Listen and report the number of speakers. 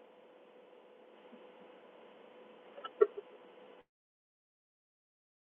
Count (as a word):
zero